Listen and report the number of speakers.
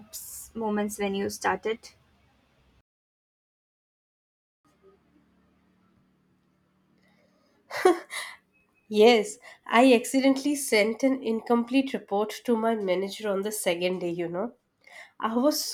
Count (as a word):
two